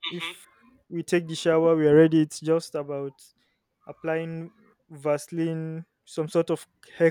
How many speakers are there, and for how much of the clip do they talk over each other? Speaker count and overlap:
one, no overlap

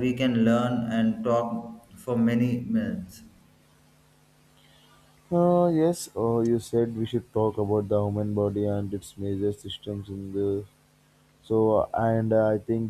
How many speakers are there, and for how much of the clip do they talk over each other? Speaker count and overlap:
two, no overlap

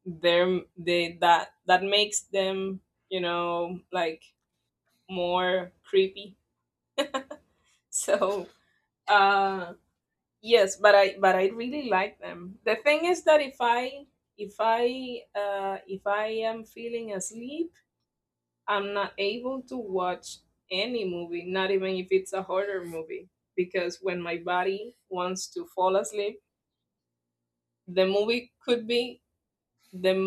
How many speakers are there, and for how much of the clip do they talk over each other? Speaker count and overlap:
one, no overlap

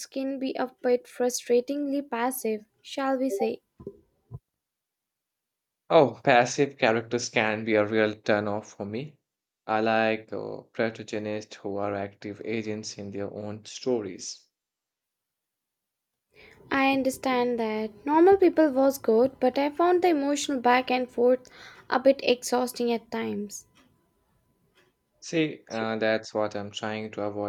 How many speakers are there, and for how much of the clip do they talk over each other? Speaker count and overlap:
two, no overlap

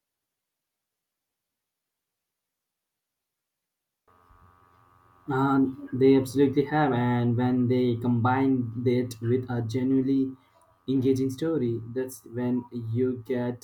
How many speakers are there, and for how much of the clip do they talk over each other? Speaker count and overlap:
one, no overlap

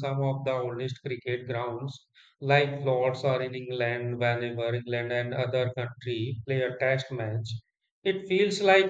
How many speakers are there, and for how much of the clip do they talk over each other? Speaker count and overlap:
one, no overlap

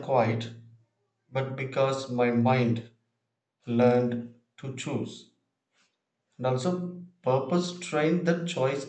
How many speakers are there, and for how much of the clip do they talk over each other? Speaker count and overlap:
one, no overlap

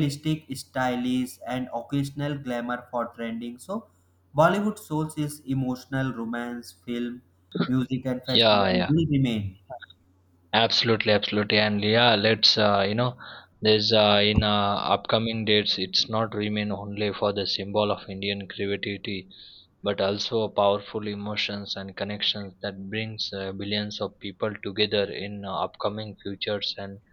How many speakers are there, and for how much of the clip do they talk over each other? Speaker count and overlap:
two, about 2%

